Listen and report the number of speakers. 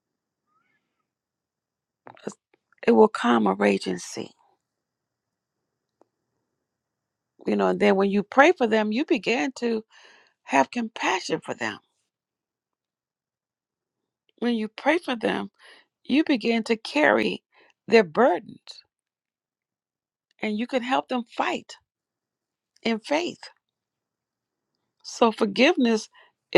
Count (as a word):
one